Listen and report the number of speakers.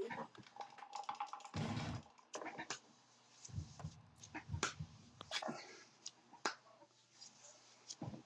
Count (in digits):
0